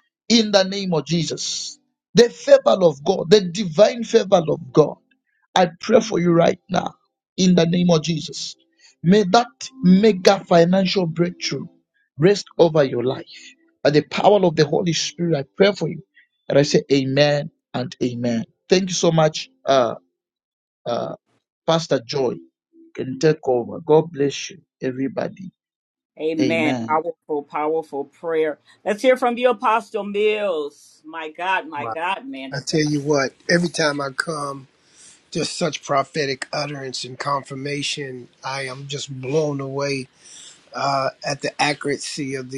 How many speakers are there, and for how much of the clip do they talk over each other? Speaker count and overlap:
three, about 2%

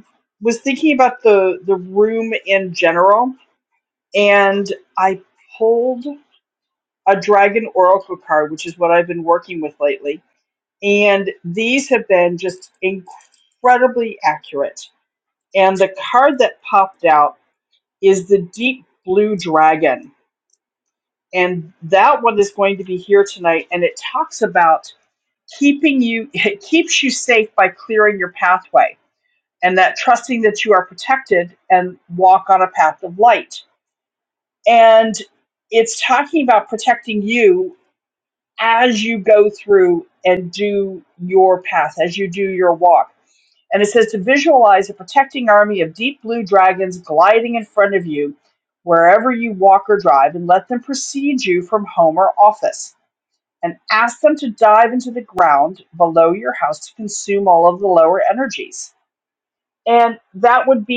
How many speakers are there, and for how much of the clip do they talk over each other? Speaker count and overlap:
one, no overlap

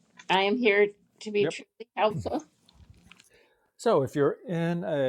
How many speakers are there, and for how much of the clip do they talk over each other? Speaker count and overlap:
two, about 3%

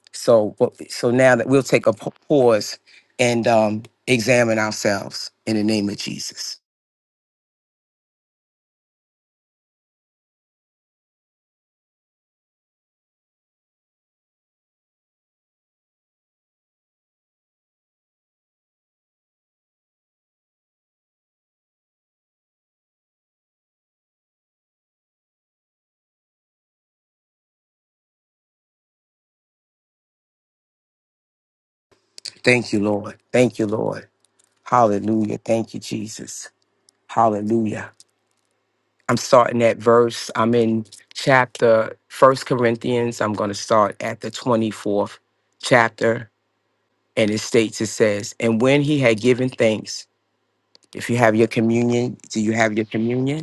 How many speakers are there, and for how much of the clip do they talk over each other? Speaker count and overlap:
one, no overlap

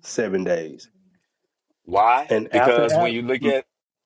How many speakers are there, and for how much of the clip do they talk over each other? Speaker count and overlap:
two, about 31%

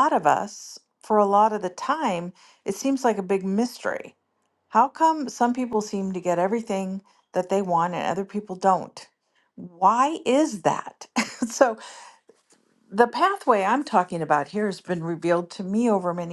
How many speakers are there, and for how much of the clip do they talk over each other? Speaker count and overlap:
one, no overlap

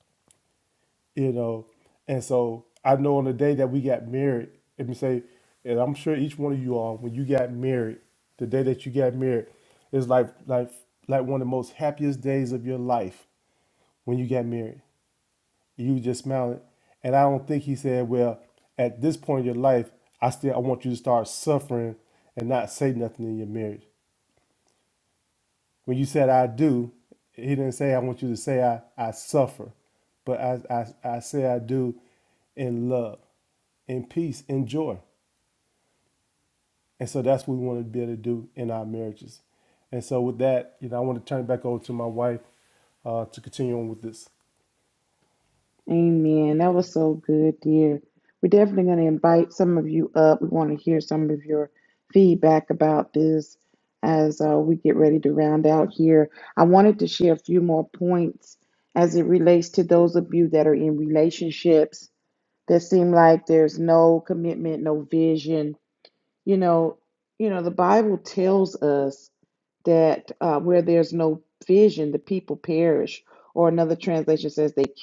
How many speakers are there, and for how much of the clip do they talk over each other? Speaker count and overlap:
two, no overlap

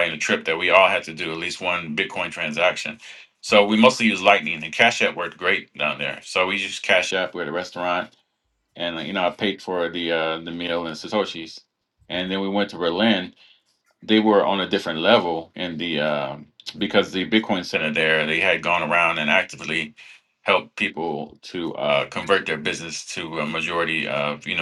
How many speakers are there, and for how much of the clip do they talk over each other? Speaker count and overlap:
one, no overlap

